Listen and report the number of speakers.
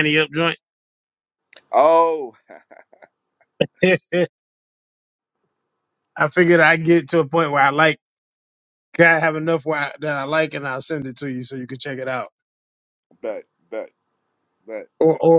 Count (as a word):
two